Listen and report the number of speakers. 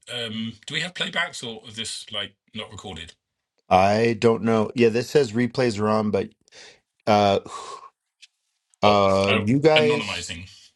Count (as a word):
two